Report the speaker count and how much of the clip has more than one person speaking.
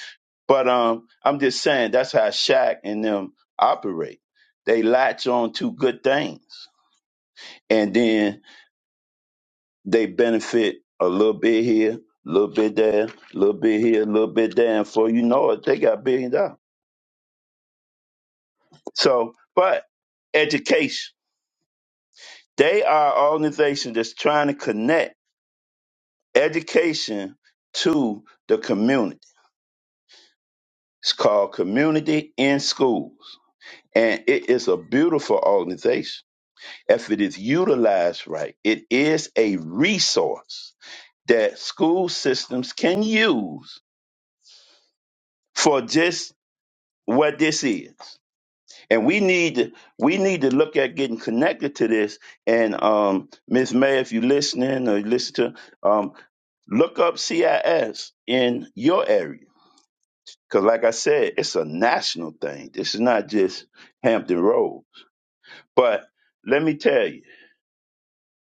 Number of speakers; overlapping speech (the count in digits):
1, no overlap